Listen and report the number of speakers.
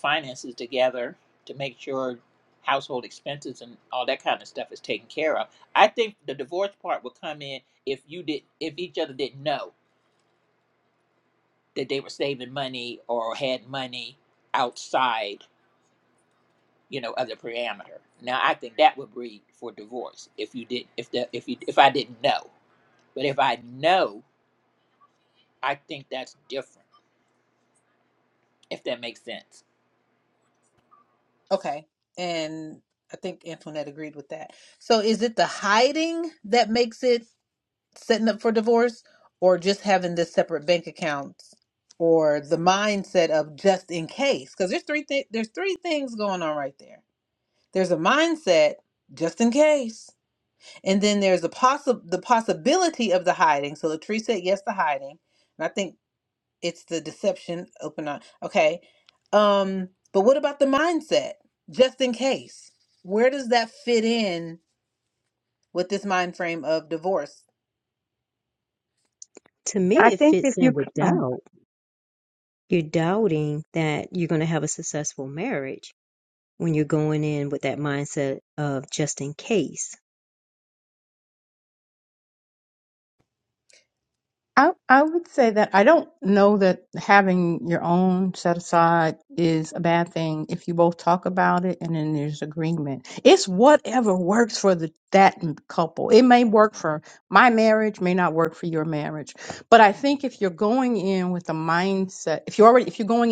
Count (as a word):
four